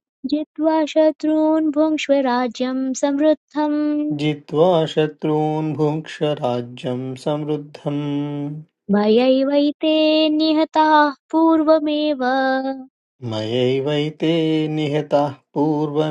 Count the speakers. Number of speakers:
2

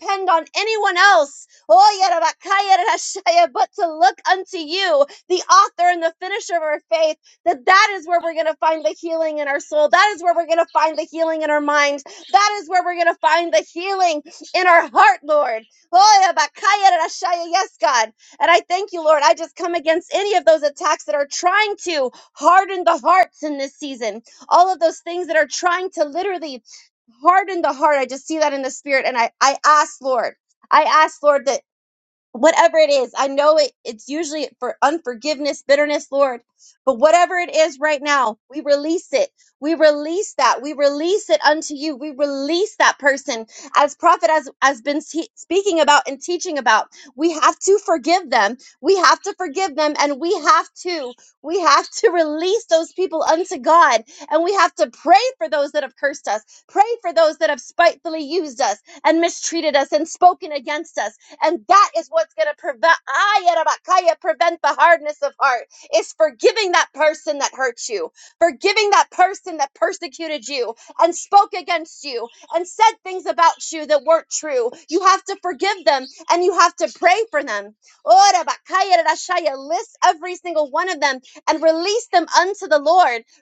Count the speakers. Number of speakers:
1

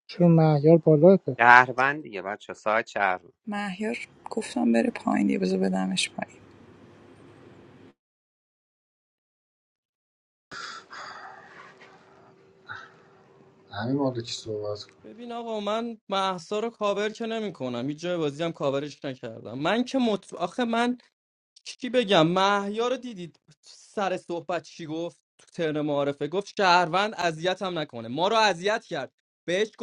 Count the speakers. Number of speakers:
5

